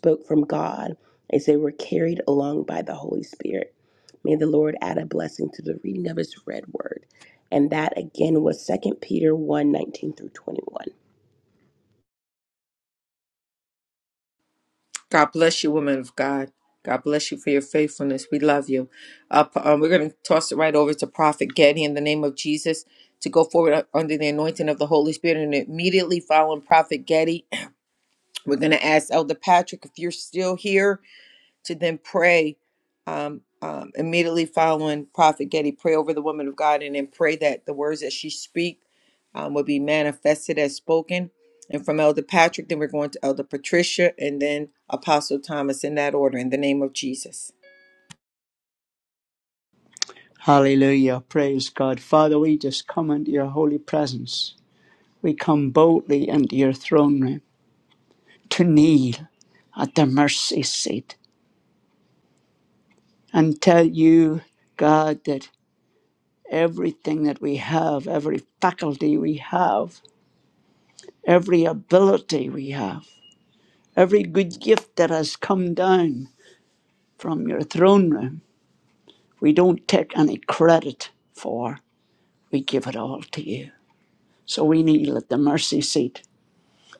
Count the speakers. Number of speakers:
3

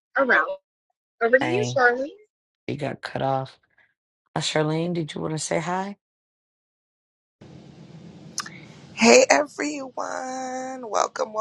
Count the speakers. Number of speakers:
3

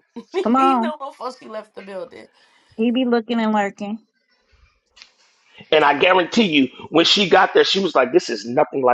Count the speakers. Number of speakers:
3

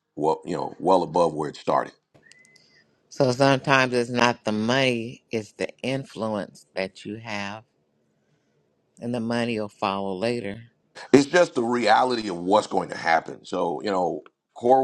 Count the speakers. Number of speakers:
2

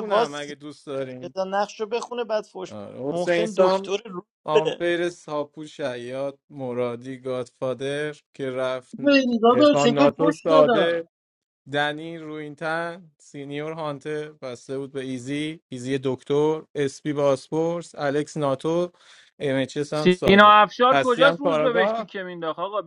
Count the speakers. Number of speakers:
4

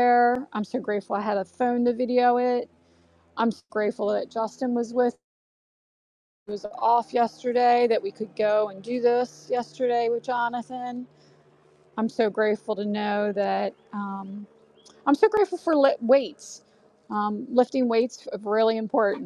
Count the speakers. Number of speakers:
1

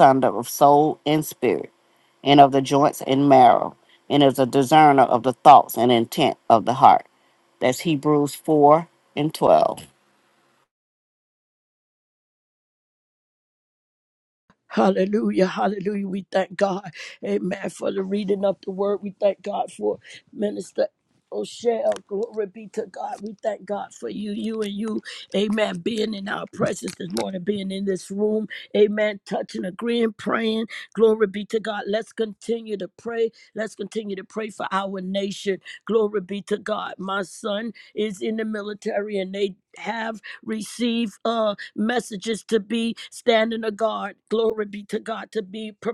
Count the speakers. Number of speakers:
2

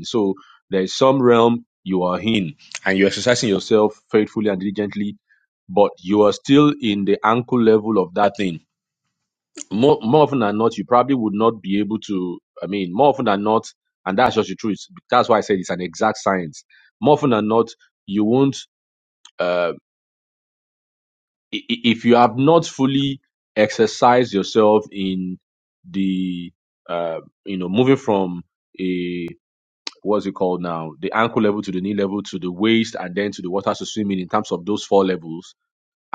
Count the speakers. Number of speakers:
1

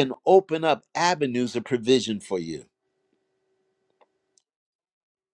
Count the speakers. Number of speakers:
1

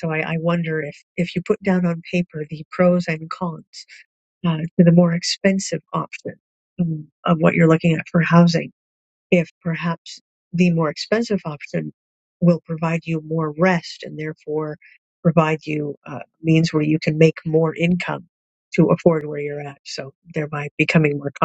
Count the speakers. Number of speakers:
1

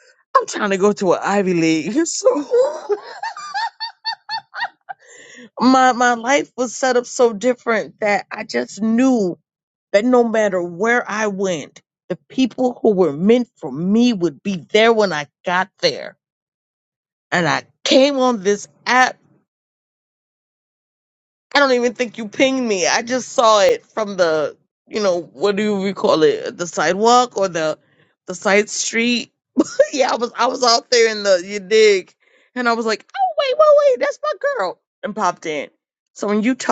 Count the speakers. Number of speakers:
1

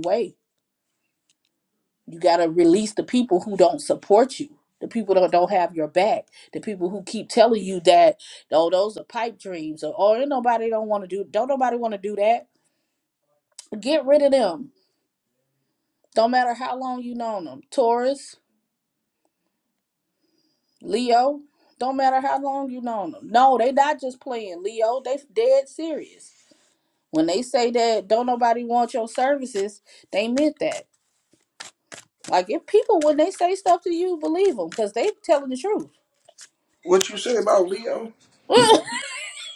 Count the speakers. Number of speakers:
2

